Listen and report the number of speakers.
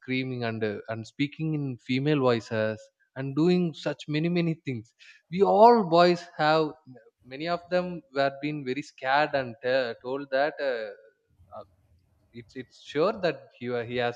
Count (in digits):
1